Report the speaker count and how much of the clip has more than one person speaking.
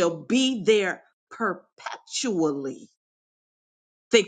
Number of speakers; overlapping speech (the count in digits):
1, no overlap